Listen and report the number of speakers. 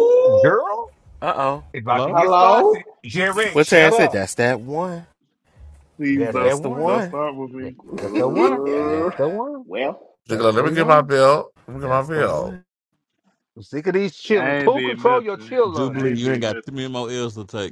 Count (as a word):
six